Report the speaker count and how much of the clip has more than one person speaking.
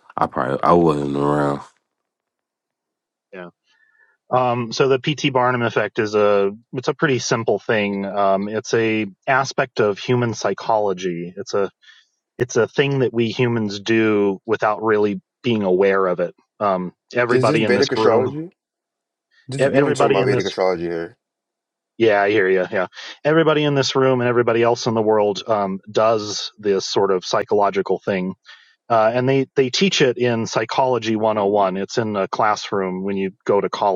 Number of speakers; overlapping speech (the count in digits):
3, about 6%